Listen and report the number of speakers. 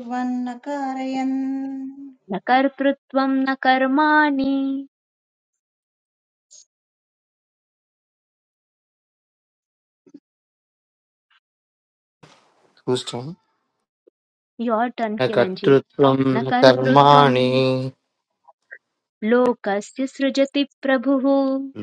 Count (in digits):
3